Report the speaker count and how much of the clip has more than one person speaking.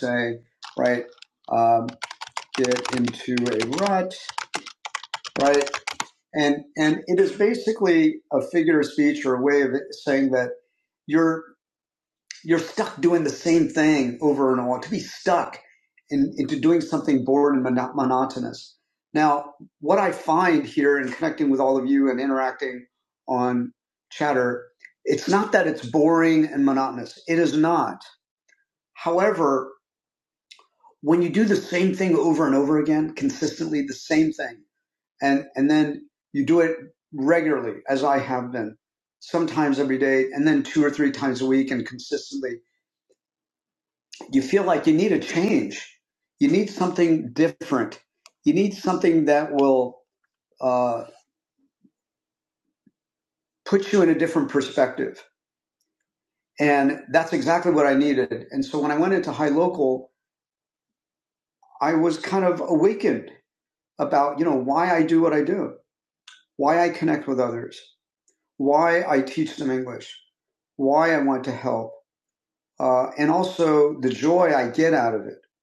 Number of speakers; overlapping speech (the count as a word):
one, no overlap